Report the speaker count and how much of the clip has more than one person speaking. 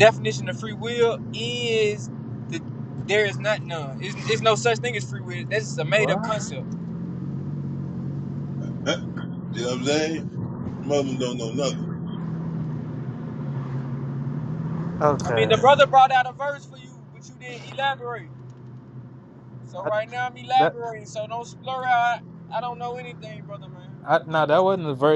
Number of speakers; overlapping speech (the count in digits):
3, about 4%